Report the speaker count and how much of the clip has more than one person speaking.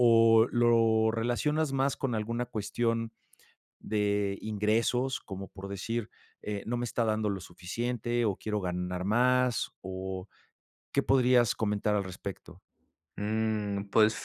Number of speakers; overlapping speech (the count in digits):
2, no overlap